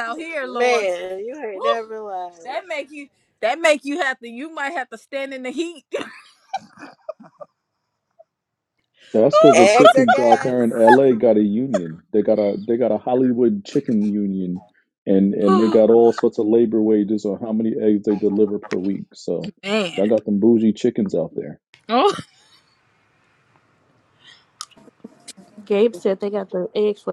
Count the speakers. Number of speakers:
4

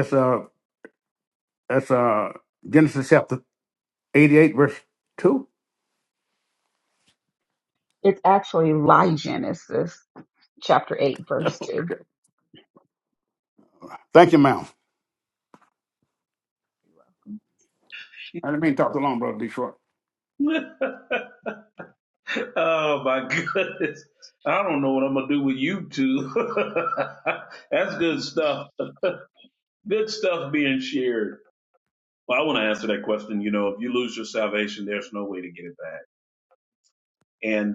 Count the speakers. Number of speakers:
3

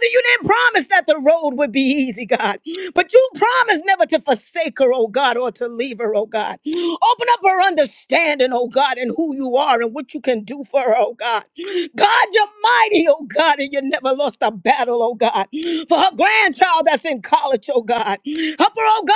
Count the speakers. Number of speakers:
1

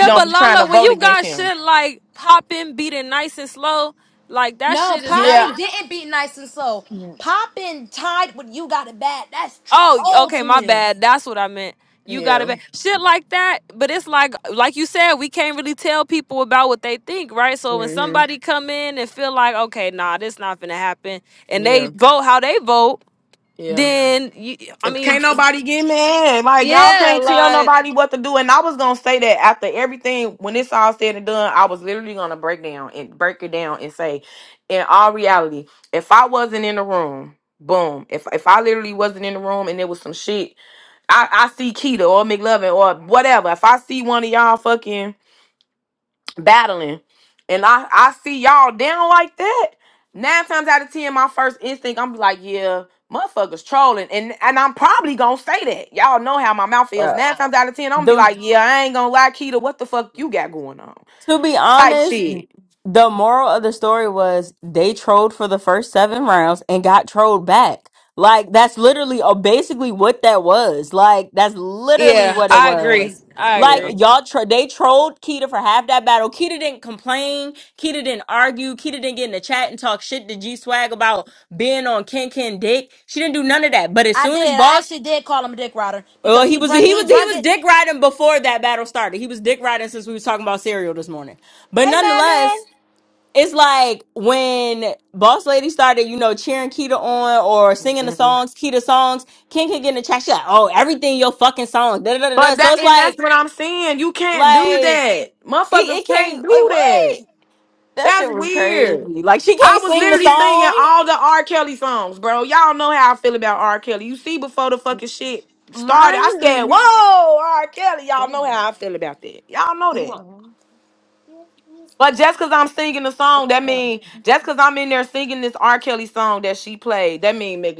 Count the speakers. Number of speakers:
4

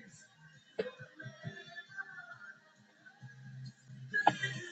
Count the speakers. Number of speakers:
0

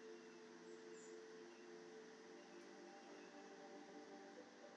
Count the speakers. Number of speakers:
0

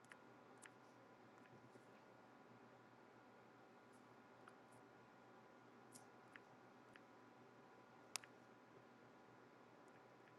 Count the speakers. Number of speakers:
0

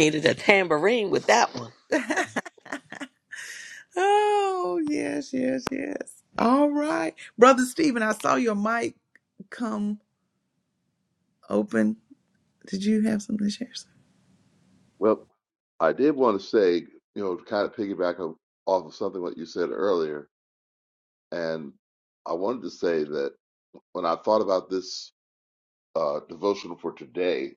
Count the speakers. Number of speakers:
3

